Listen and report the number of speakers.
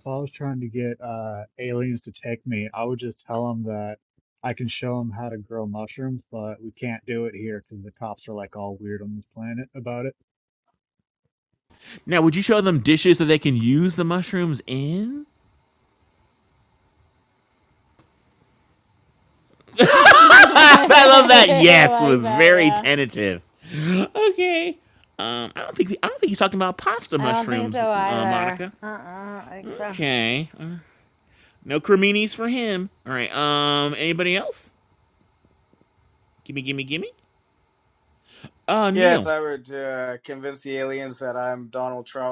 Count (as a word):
four